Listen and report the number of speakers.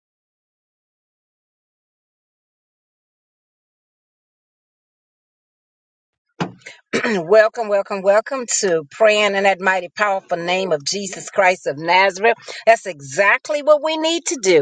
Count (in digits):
1